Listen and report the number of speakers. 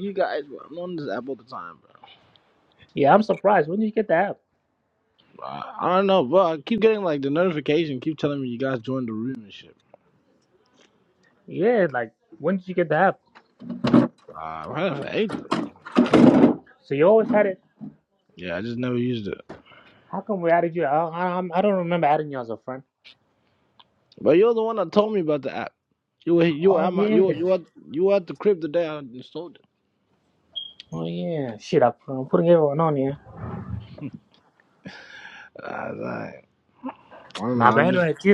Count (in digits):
2